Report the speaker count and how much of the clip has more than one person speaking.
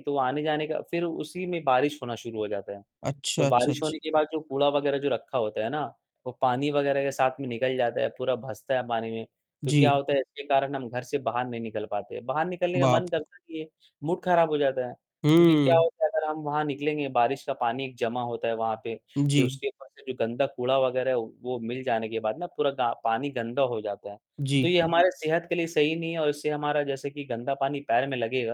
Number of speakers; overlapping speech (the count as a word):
two, about 6%